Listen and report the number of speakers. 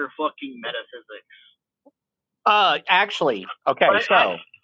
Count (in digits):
2